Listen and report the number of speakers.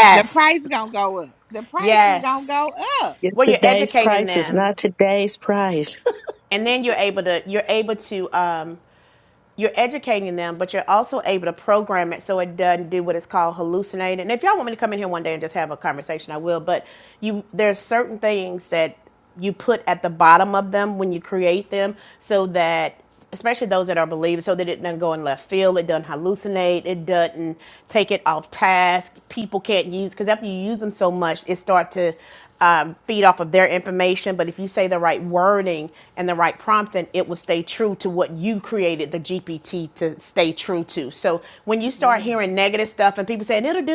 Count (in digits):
3